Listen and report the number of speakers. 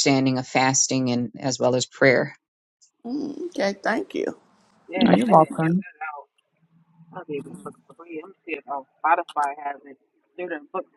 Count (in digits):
3